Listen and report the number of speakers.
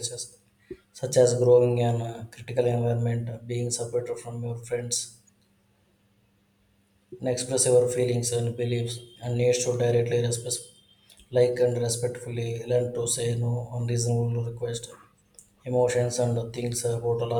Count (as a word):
one